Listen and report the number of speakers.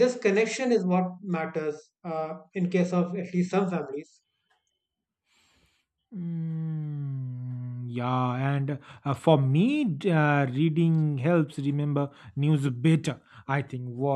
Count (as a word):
two